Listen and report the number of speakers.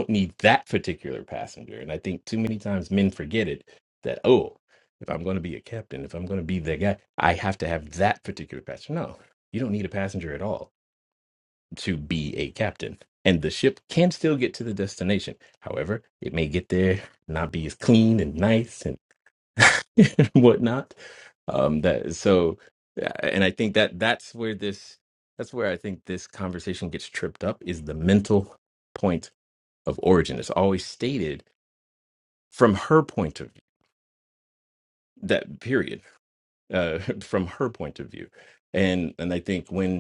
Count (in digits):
1